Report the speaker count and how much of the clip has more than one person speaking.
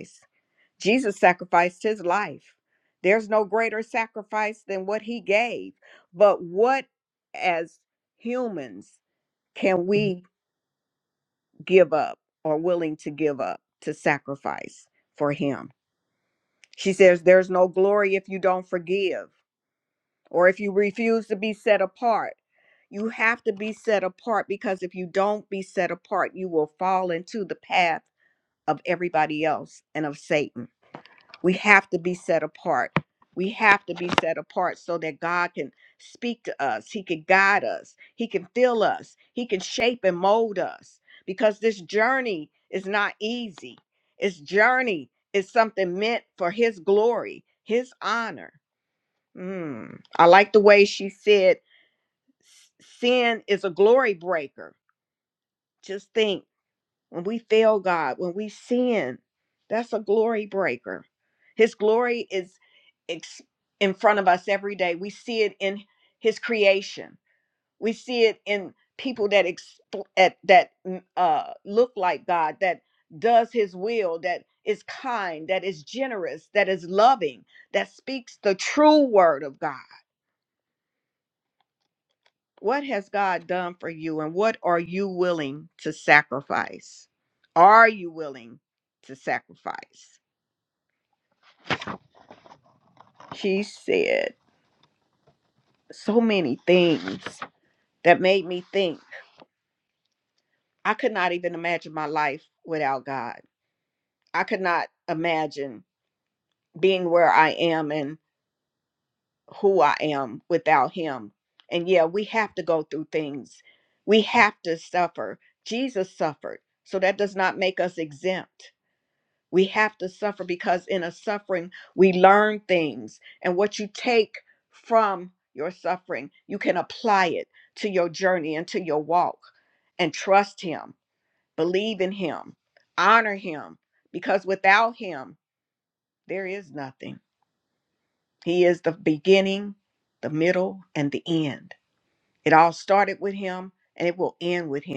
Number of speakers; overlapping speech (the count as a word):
one, no overlap